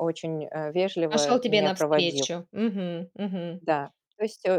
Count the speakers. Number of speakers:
2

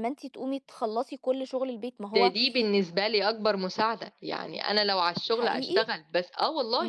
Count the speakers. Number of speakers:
2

